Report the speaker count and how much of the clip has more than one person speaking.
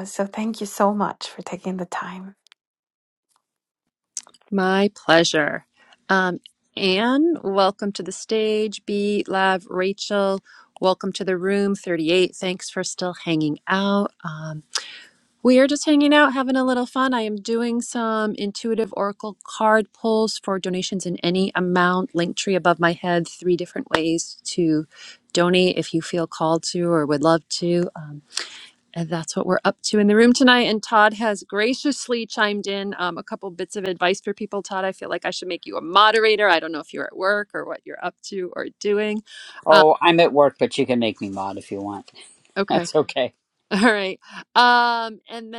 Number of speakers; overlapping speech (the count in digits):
3, about 1%